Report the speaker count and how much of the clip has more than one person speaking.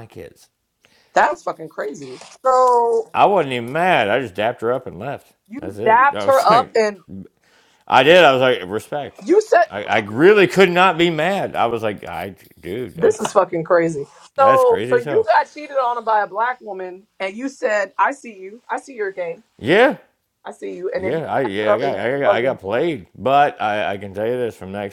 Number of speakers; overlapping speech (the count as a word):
two, about 15%